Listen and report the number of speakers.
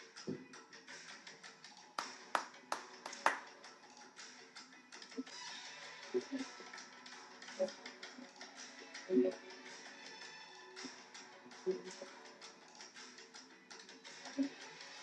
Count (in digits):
0